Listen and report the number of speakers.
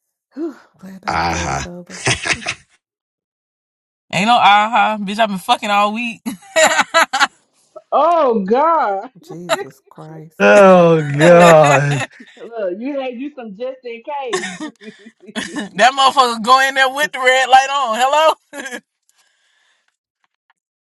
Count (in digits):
4